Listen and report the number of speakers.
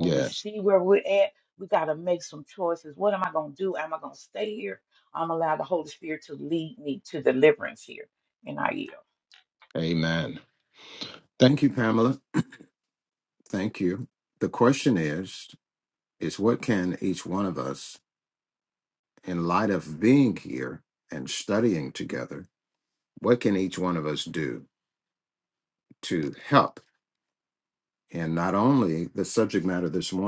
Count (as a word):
two